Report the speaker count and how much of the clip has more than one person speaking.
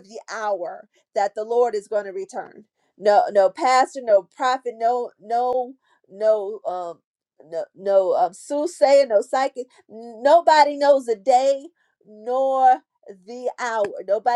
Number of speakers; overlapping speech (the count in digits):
1, no overlap